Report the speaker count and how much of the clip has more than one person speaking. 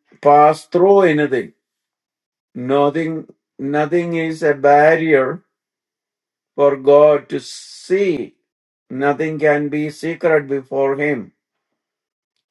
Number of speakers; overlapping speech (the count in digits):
1, no overlap